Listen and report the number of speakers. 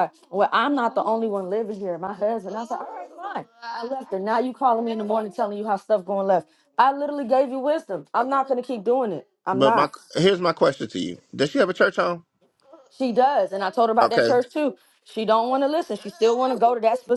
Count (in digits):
2